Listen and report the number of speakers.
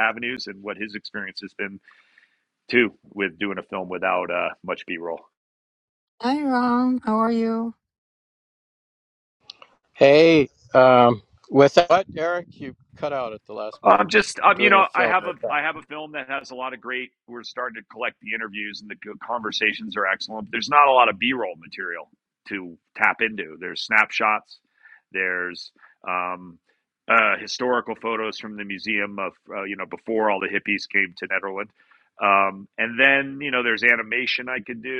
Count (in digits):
3